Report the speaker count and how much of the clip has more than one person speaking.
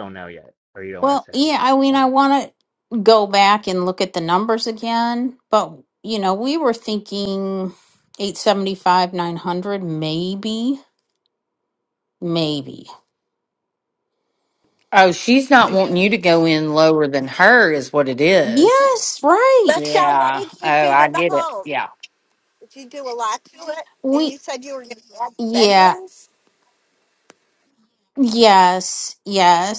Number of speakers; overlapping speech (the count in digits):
4, about 14%